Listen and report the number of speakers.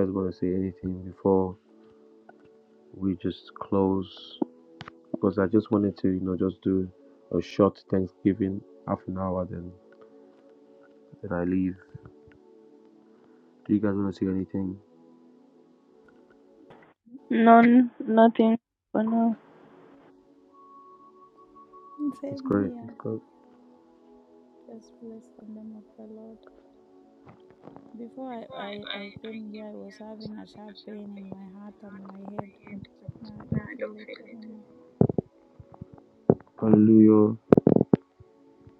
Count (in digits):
3